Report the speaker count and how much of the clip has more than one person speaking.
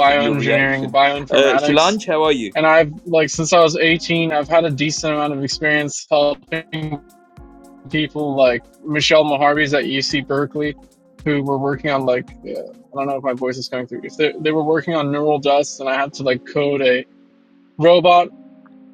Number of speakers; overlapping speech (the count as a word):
two, about 8%